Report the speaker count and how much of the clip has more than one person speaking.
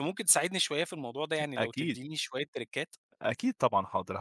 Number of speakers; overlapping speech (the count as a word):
two, about 9%